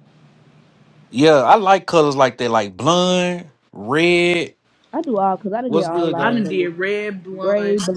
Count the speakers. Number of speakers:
three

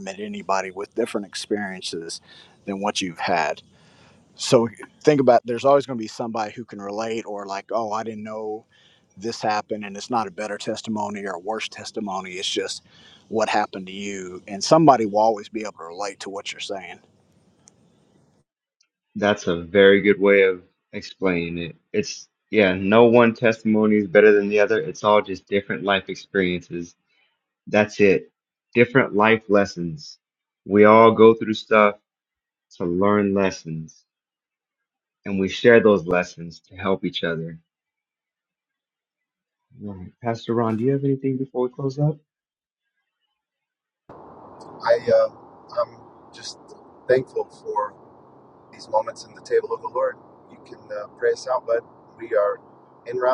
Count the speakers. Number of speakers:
three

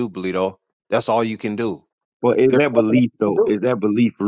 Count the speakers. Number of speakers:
two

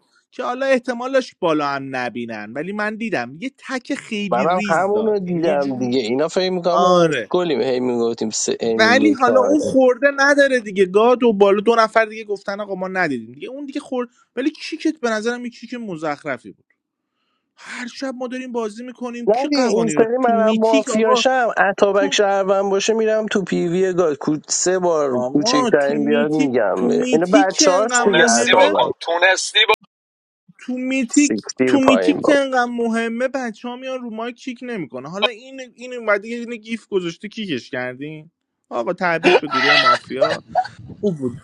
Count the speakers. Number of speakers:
three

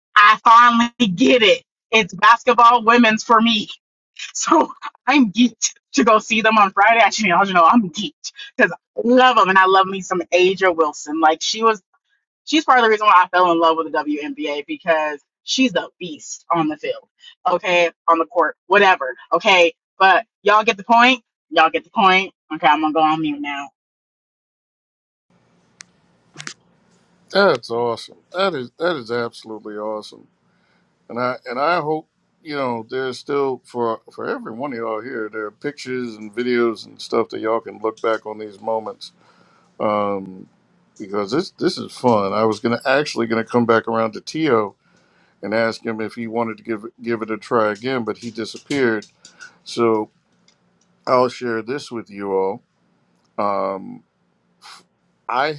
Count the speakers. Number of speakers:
two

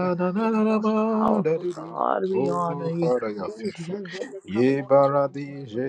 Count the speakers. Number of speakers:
two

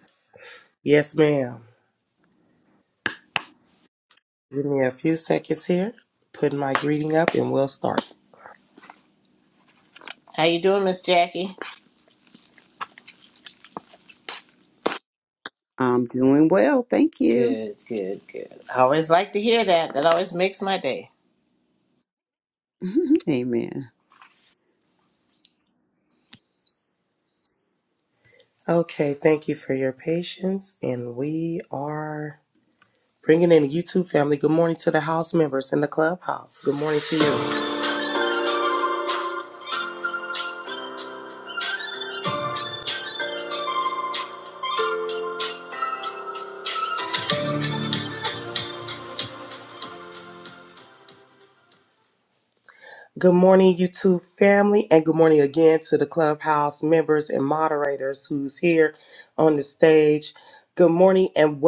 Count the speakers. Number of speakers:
three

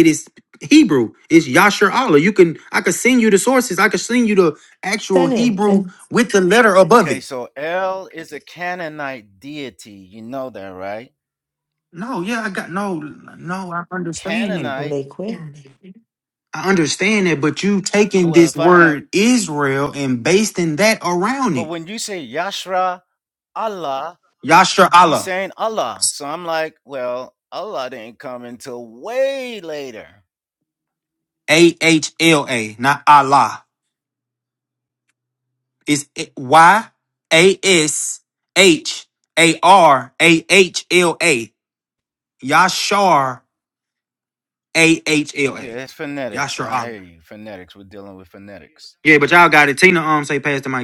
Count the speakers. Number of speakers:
three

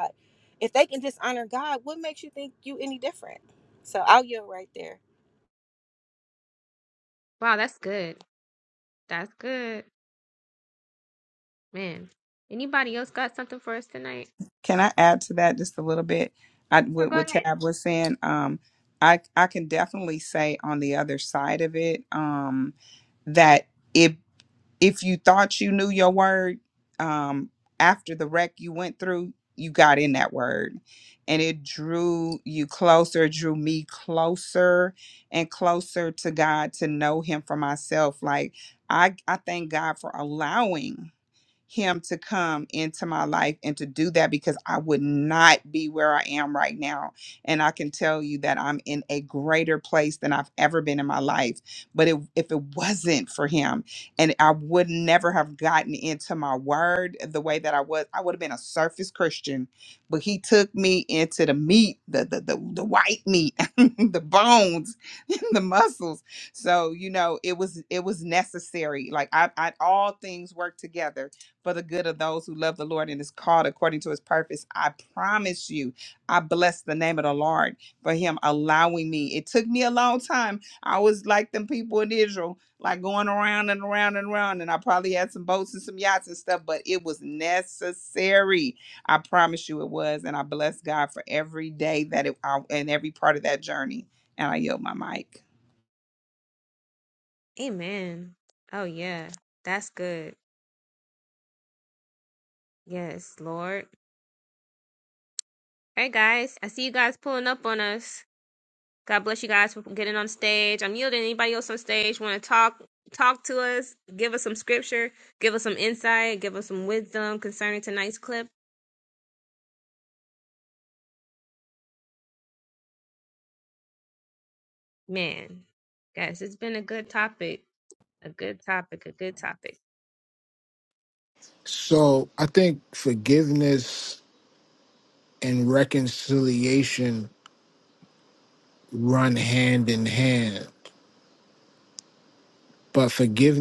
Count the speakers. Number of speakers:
four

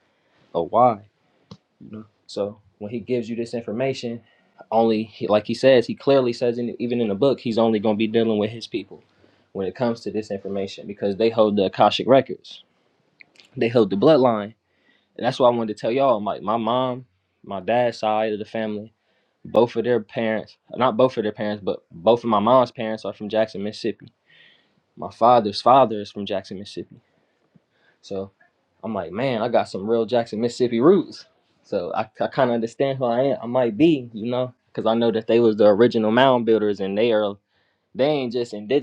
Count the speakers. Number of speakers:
one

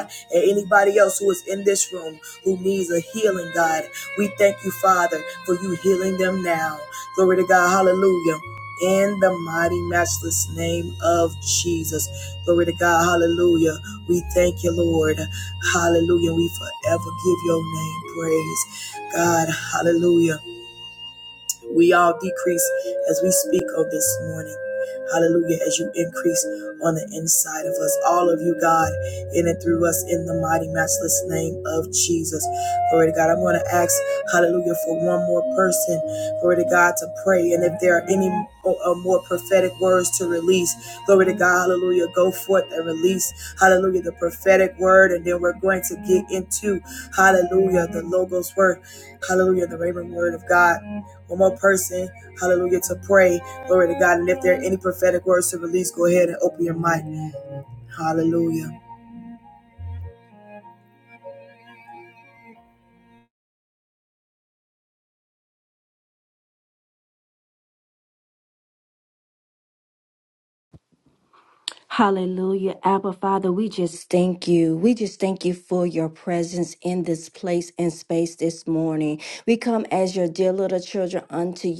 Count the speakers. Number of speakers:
two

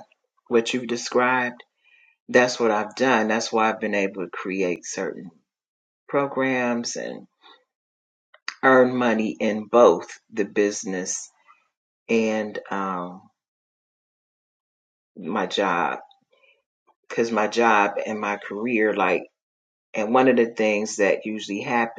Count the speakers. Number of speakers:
one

